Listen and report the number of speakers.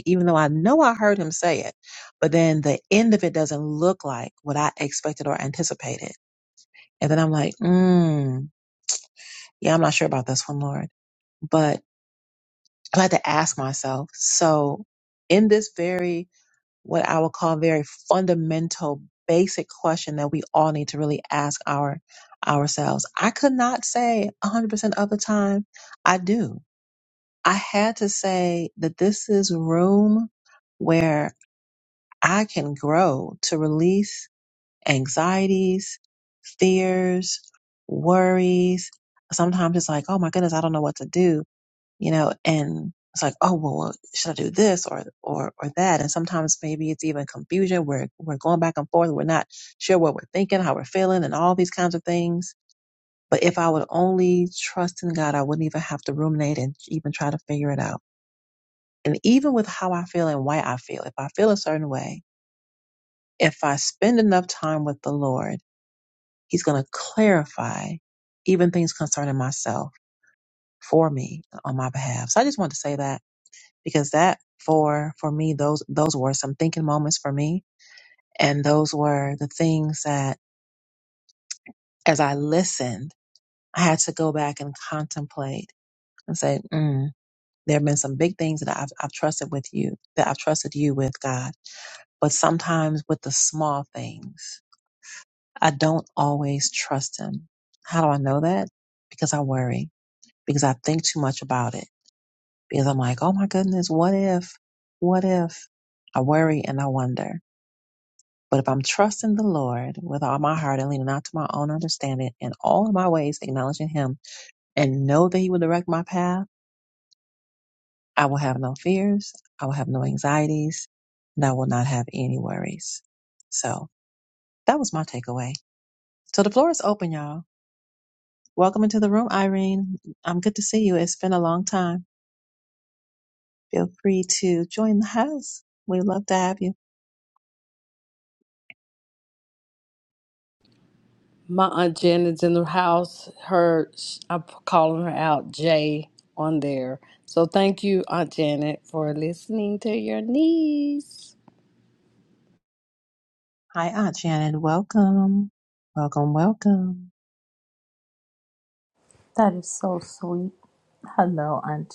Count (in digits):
3